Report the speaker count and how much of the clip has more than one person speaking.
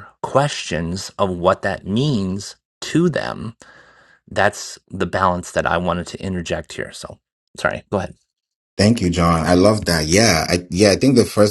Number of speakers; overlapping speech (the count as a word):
two, no overlap